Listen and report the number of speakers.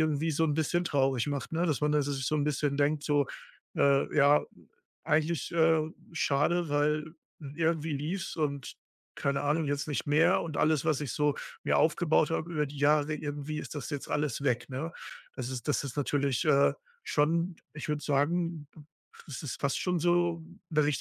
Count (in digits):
1